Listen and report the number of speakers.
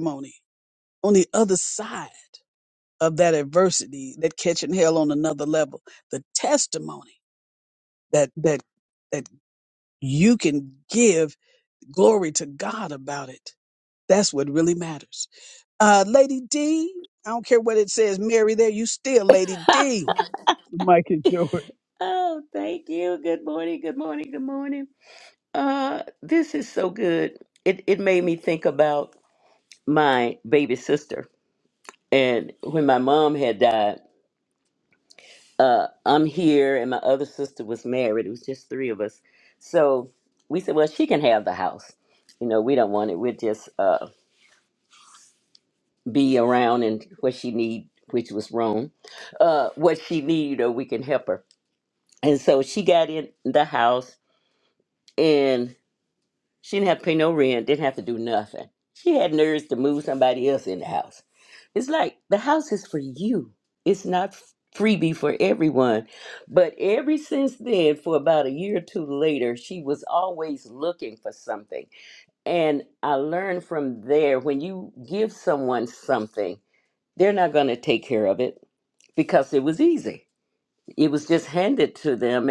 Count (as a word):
two